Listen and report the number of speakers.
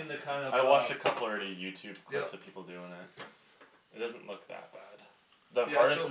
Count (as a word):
two